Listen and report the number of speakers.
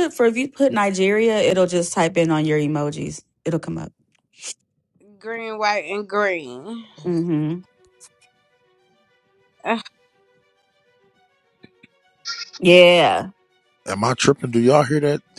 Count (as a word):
three